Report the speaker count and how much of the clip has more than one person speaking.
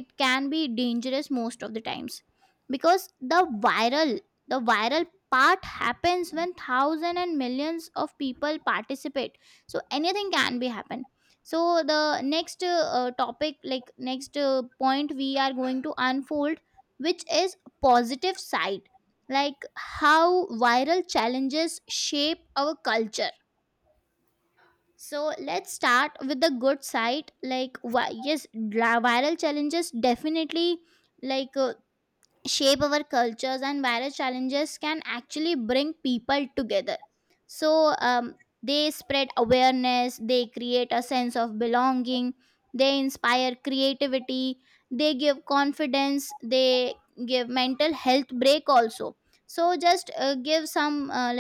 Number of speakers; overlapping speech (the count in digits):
1, no overlap